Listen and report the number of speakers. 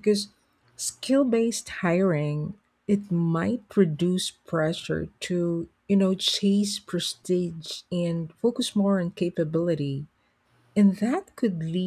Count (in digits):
1